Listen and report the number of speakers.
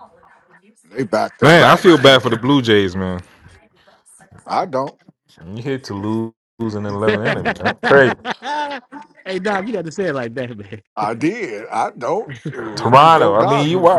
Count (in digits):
3